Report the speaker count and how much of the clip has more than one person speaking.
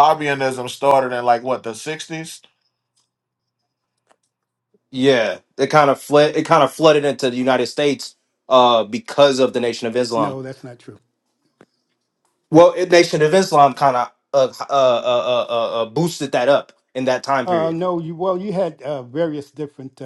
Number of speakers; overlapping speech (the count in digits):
3, about 2%